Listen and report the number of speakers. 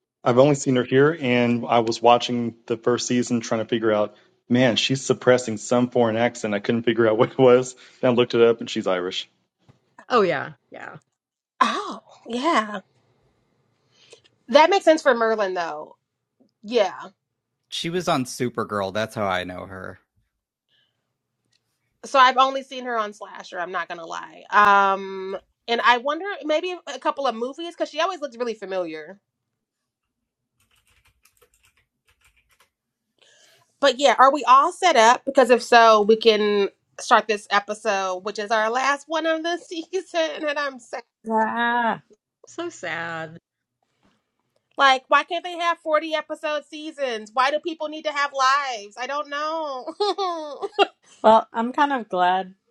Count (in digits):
5